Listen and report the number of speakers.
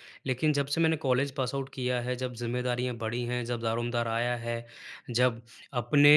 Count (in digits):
1